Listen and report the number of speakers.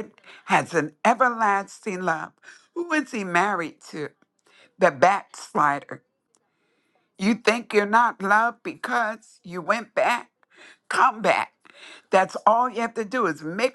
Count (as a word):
one